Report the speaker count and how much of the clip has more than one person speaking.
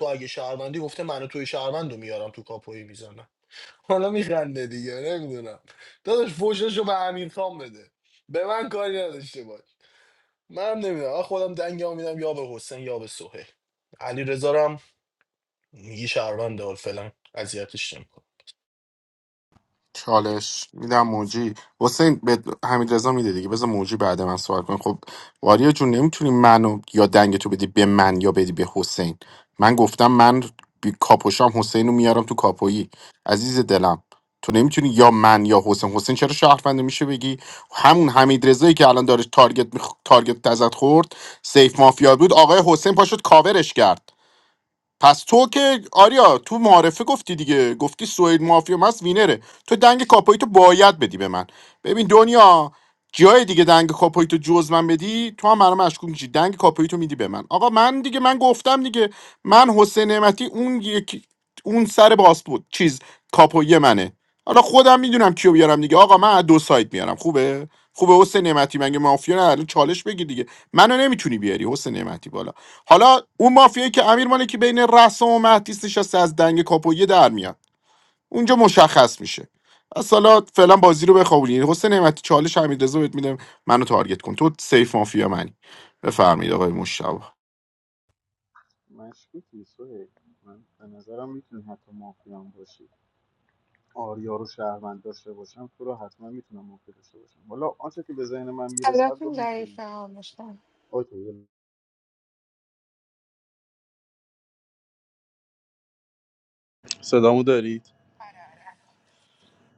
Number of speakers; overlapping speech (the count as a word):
four, about 1%